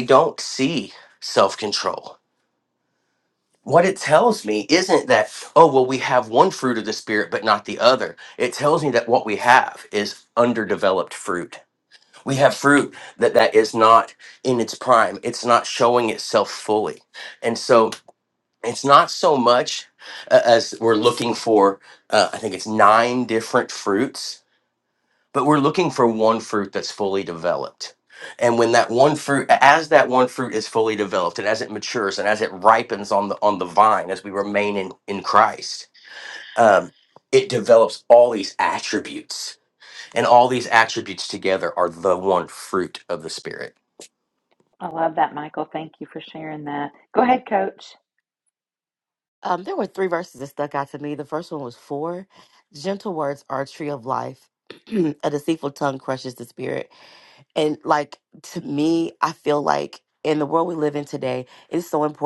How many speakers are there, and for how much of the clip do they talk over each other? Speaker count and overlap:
three, no overlap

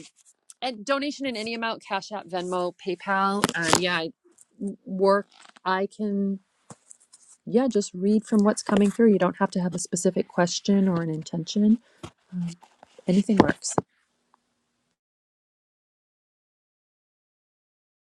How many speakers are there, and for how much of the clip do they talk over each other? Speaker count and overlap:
one, no overlap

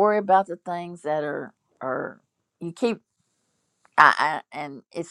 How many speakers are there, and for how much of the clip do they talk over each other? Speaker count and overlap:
one, no overlap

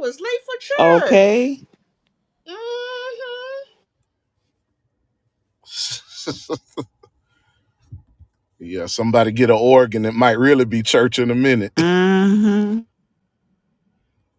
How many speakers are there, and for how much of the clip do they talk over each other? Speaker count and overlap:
three, about 3%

